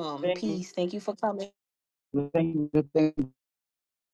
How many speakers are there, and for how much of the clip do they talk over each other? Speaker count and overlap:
2, about 9%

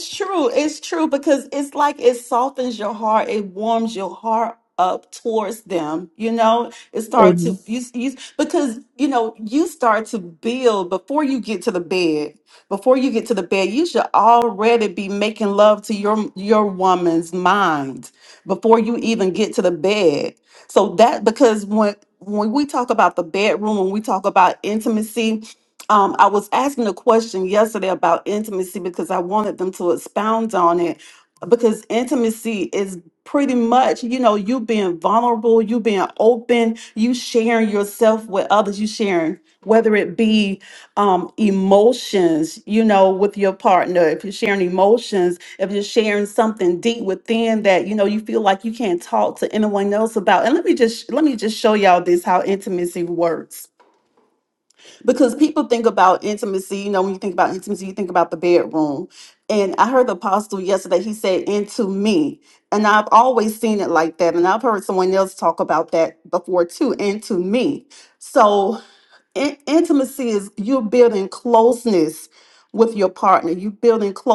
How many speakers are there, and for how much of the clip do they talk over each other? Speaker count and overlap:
1, no overlap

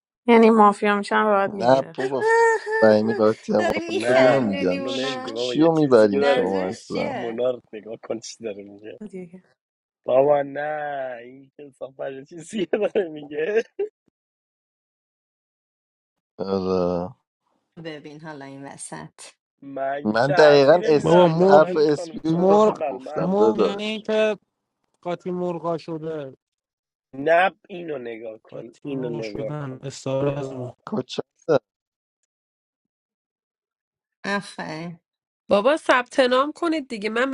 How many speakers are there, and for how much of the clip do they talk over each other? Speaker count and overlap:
6, about 27%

